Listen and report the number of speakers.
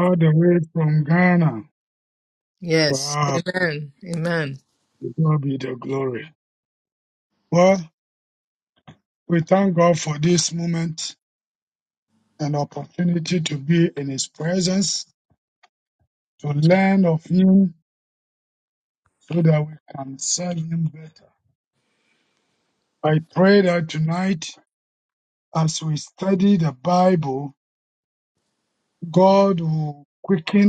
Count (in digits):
2